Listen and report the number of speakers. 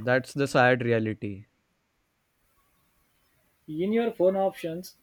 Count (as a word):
two